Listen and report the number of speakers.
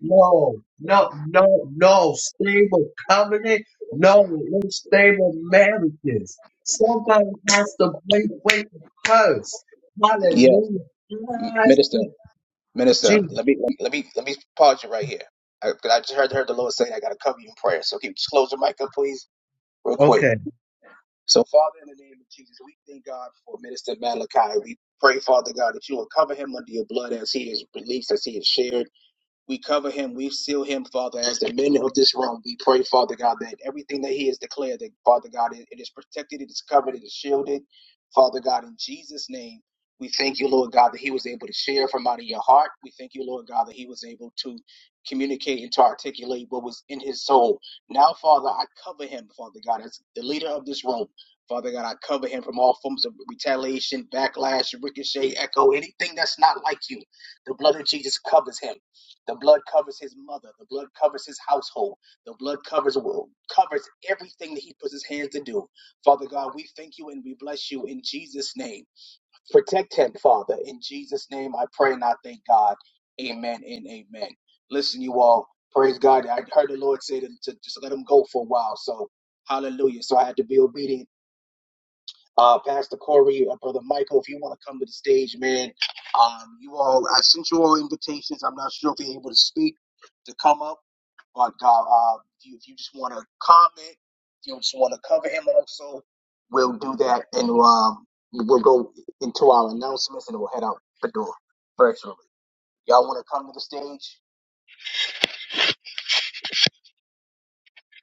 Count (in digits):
2